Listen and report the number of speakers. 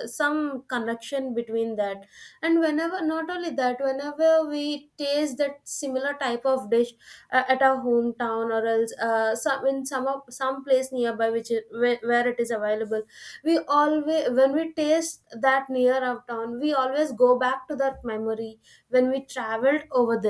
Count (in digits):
1